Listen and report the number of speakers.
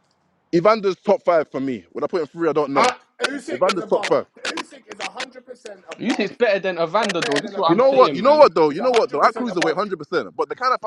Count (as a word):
three